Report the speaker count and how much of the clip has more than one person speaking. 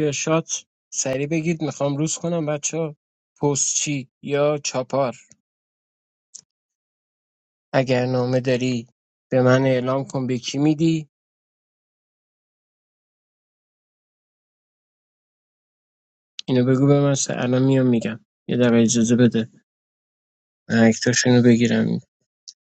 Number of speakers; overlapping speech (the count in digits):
1, no overlap